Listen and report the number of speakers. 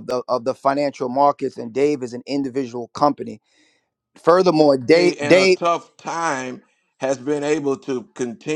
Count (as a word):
two